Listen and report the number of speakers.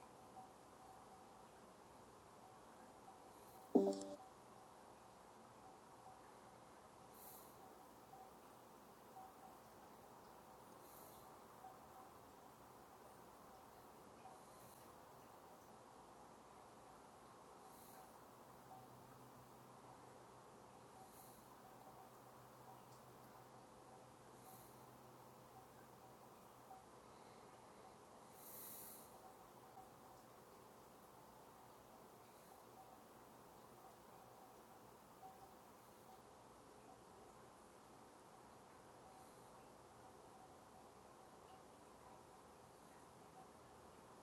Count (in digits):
0